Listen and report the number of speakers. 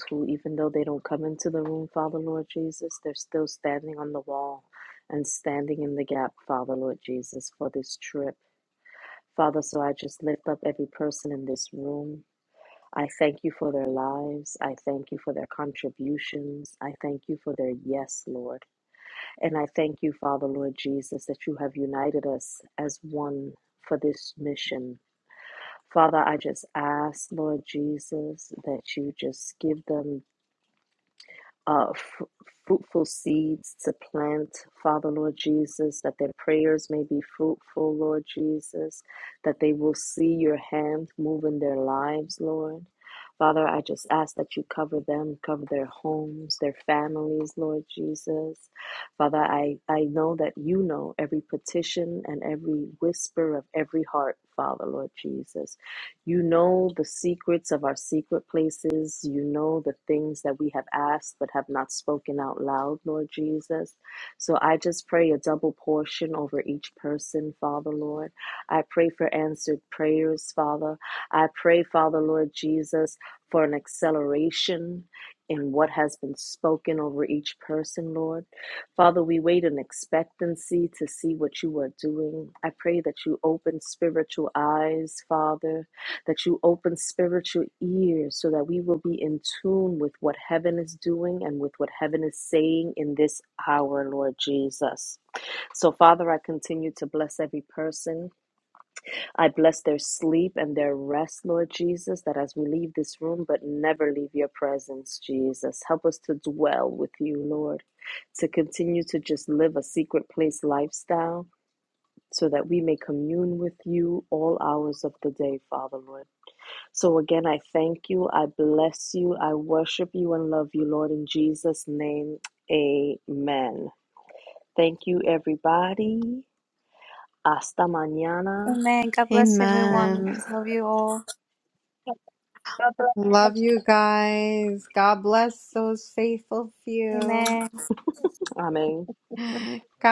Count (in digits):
3